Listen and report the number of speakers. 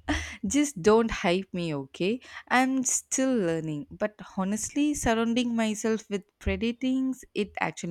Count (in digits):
1